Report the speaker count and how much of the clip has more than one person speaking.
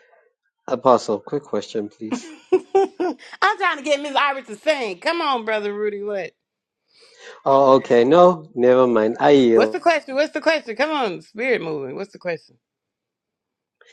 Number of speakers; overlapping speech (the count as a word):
two, about 1%